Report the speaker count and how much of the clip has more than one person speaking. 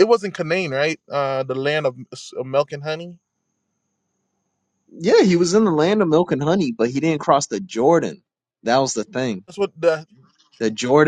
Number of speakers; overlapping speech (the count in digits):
2, no overlap